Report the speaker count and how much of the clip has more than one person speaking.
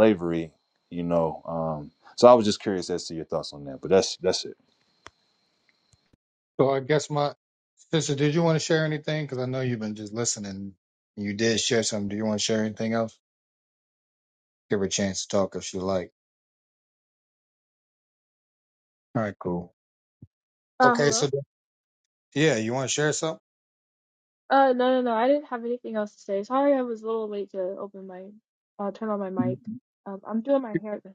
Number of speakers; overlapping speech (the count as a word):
three, about 1%